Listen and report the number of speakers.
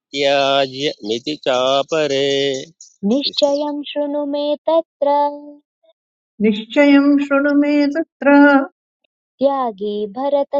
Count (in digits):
3